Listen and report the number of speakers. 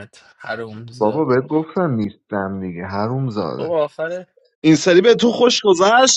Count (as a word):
three